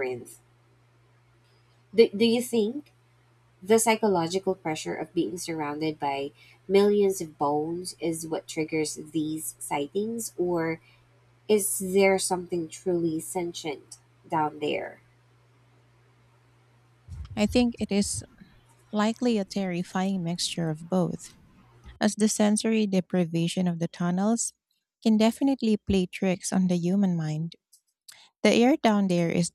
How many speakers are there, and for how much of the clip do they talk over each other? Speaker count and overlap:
two, no overlap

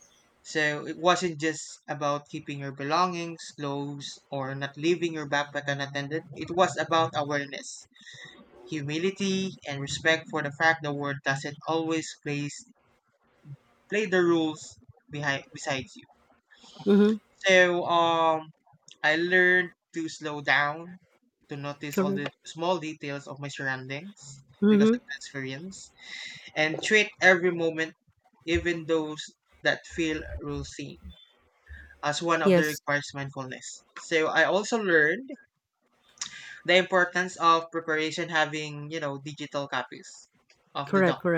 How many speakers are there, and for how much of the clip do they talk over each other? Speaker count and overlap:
two, about 2%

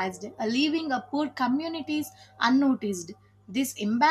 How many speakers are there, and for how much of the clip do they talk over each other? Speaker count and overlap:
one, no overlap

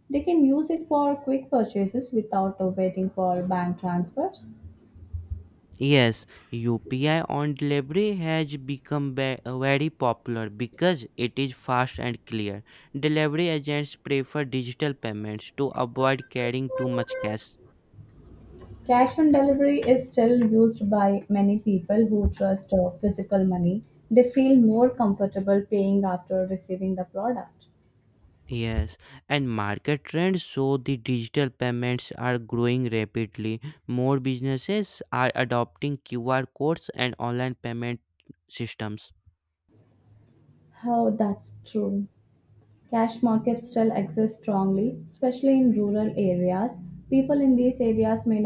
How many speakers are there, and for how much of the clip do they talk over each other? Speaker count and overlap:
two, no overlap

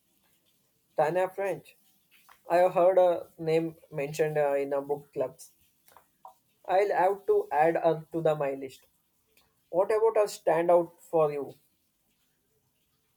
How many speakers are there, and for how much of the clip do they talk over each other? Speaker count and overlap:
one, no overlap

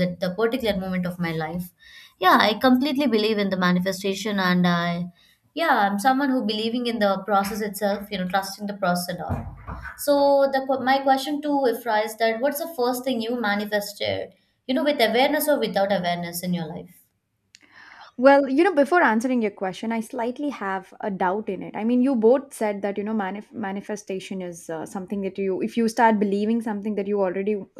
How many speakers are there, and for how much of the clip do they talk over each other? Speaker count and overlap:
two, no overlap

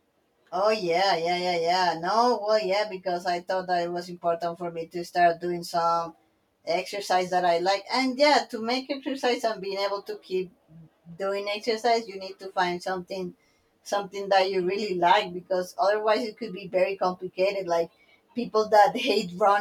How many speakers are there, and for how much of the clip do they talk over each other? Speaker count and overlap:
one, no overlap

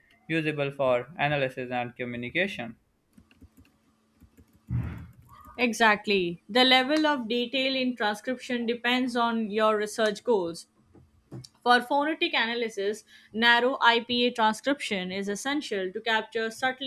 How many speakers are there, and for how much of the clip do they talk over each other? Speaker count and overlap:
two, no overlap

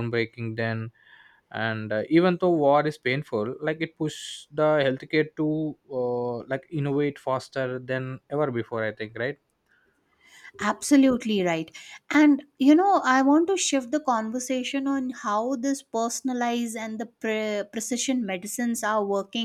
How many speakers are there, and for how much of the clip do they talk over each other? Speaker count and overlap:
two, no overlap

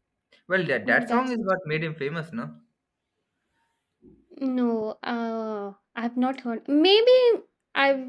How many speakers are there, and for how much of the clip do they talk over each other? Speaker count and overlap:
two, about 7%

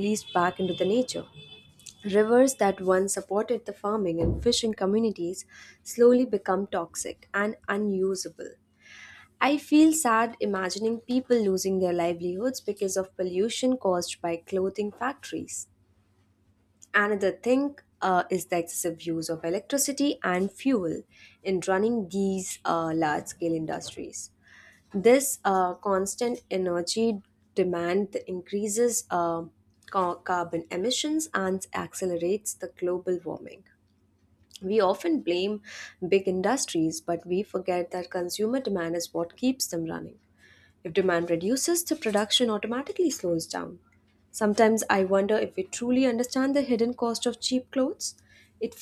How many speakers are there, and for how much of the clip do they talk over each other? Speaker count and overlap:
one, no overlap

